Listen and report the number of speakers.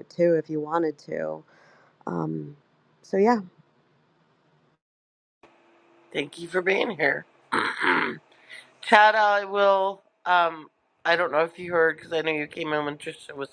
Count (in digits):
2